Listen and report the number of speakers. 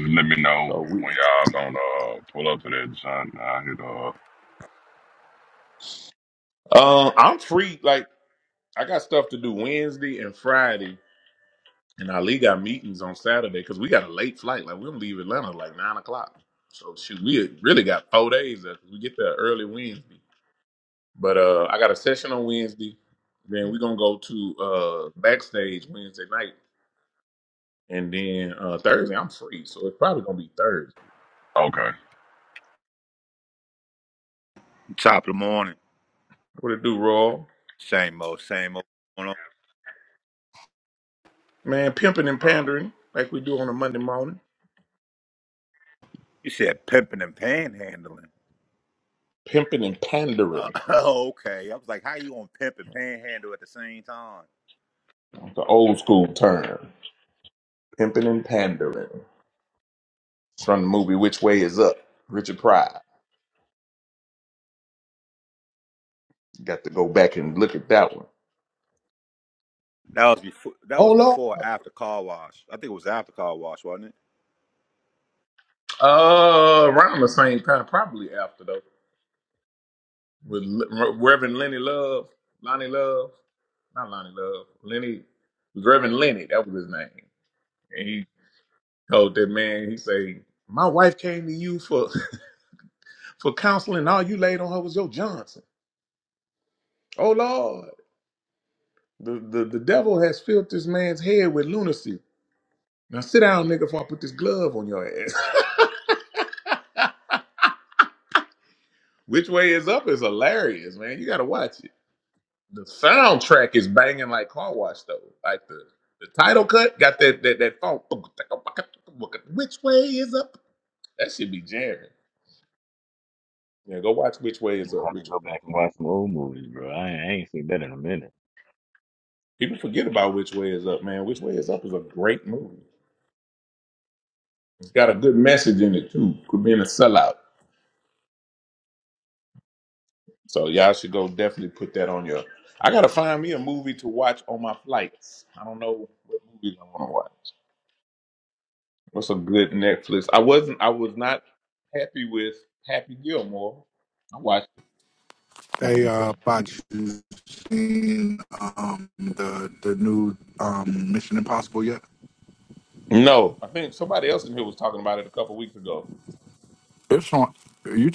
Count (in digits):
5